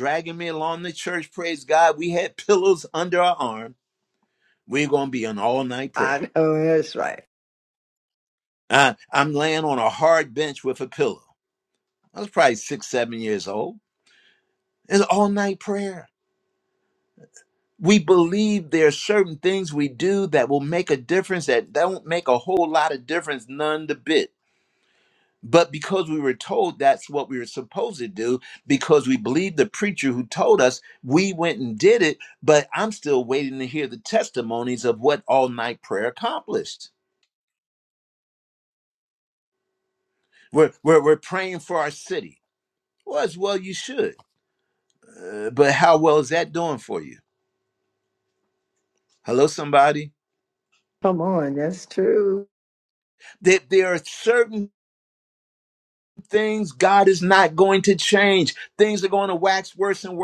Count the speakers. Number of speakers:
two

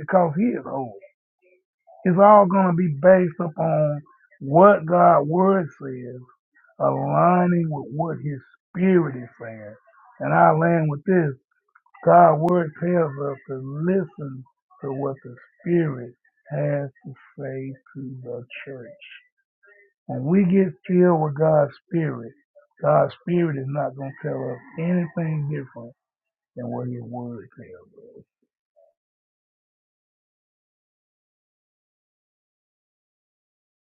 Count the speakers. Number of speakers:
one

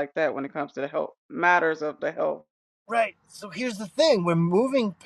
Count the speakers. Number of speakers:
two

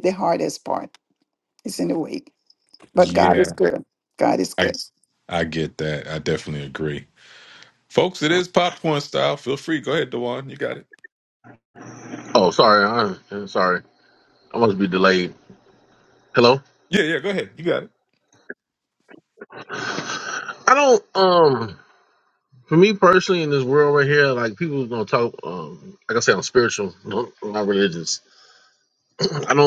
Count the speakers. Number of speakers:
three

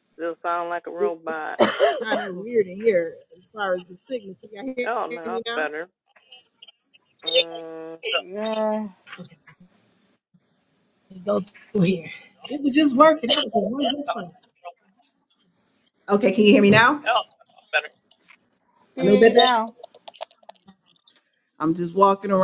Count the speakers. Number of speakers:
three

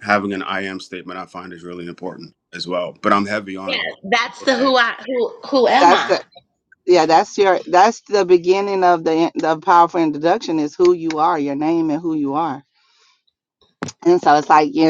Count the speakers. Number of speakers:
three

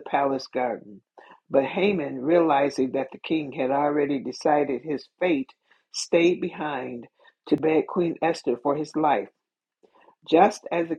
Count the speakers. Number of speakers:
one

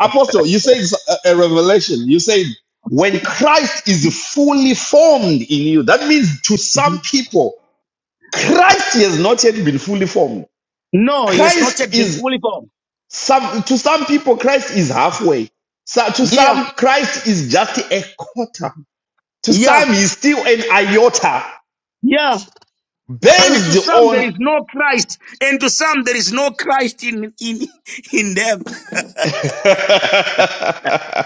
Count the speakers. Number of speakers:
two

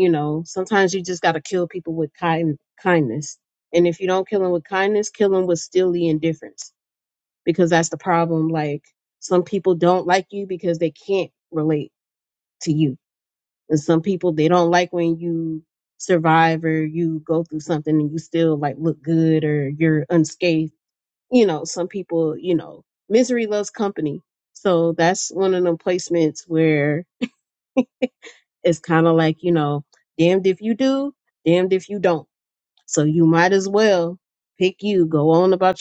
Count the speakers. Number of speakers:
one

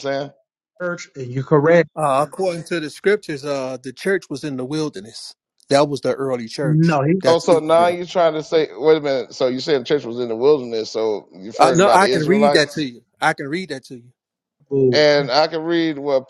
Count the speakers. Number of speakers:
three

